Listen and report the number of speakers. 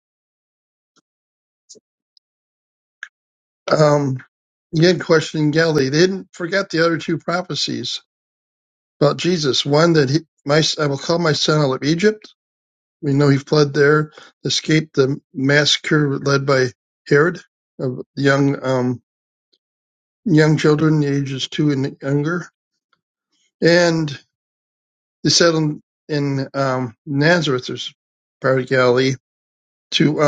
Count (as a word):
one